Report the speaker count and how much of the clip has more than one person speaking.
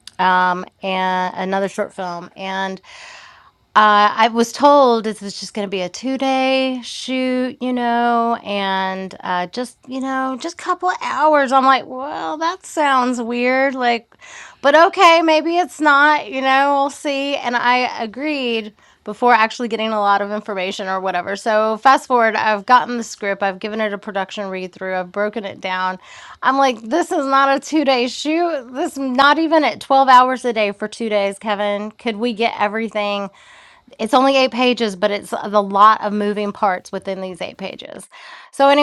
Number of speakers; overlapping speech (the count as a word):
one, no overlap